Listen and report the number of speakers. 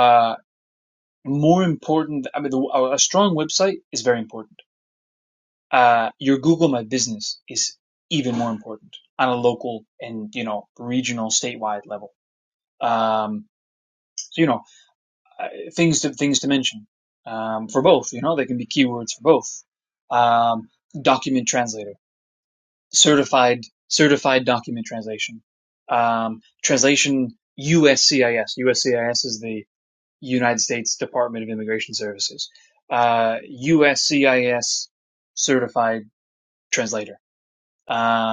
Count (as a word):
one